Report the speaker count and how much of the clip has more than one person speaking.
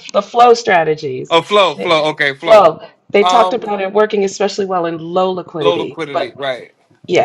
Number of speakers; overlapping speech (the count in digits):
2, about 26%